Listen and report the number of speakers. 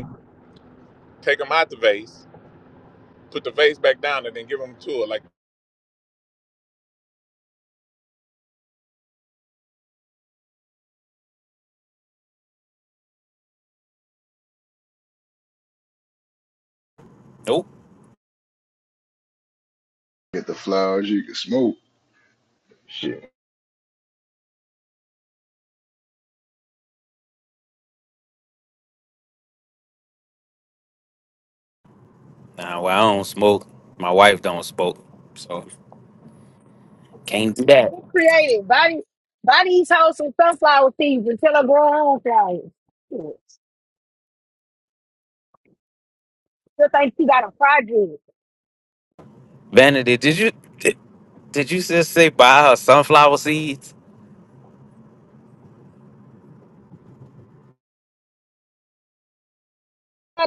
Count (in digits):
4